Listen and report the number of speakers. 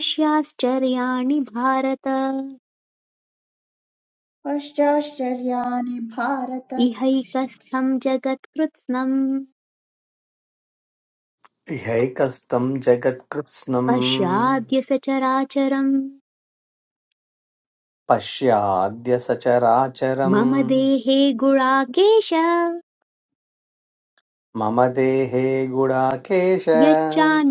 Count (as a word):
three